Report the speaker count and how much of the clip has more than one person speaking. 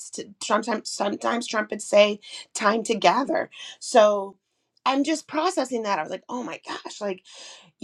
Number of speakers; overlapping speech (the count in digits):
1, no overlap